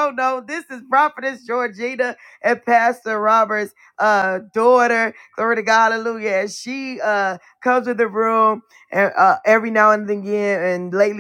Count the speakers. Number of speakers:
1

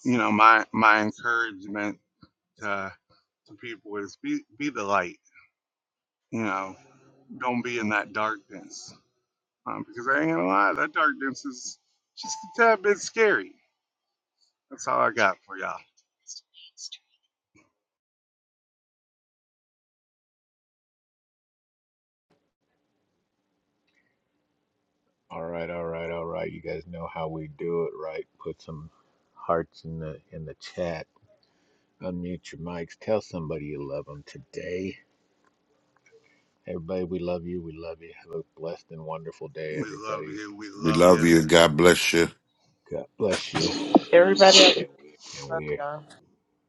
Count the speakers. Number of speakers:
4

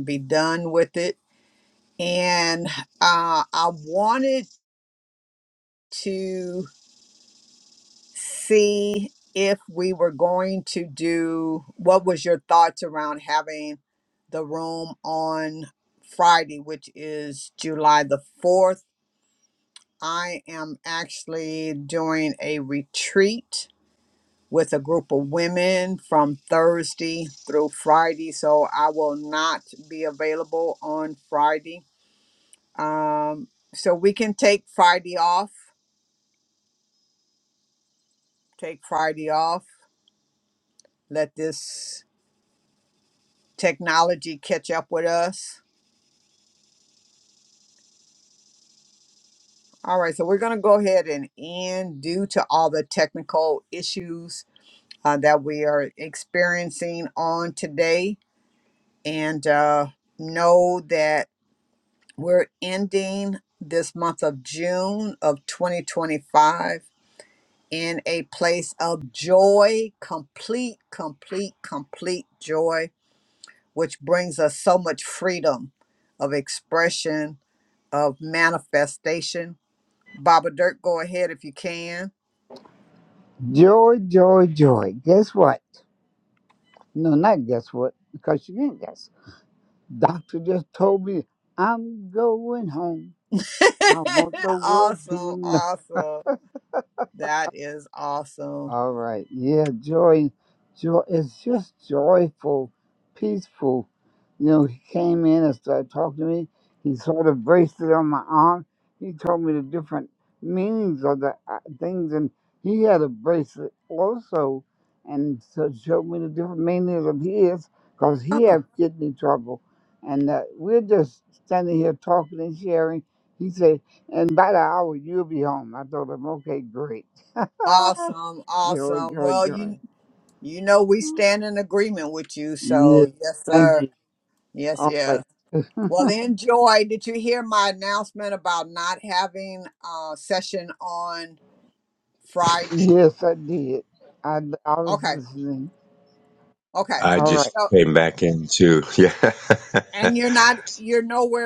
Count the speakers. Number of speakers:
3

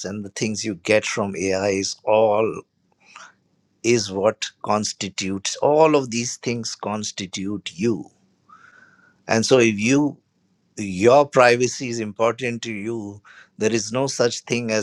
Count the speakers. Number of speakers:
1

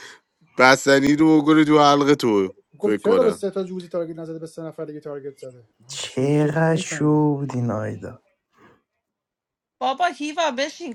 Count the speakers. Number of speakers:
4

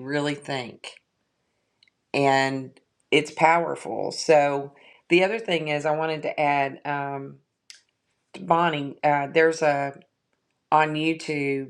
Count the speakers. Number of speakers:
1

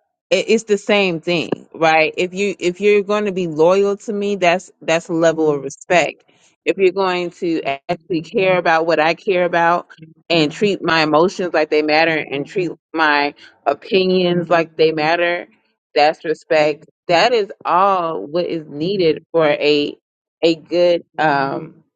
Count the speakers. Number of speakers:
1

